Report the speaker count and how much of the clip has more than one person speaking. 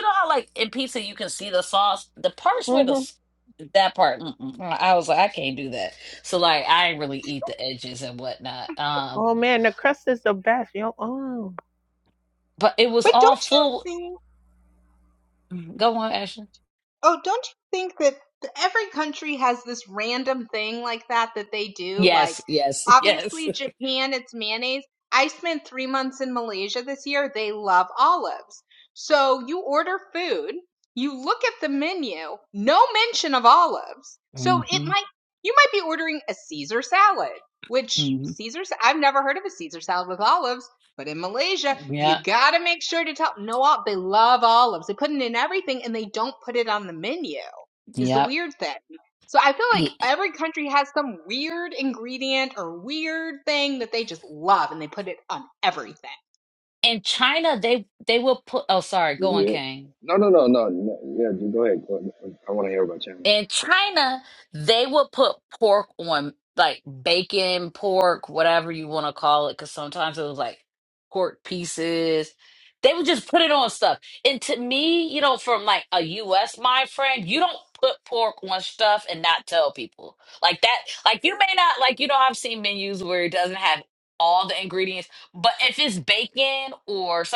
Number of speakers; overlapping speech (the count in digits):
4, about 5%